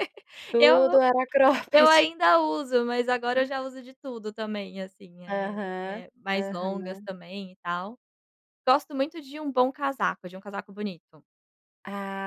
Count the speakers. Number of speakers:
two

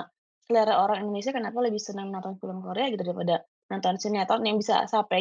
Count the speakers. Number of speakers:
one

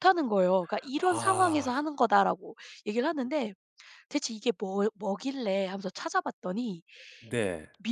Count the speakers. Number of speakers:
two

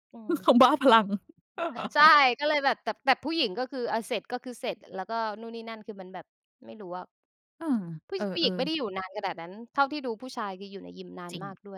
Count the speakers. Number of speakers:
two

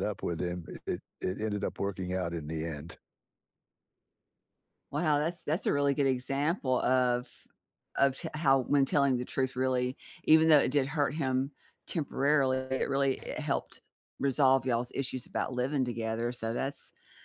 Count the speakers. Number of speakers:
two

